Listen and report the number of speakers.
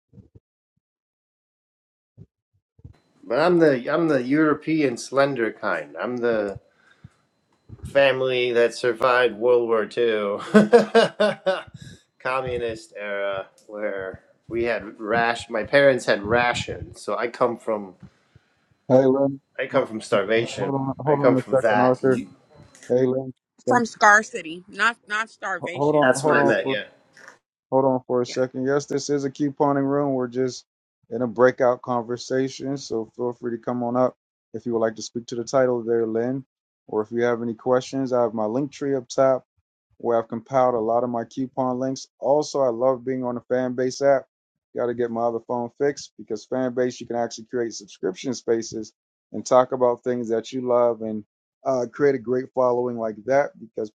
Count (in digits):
3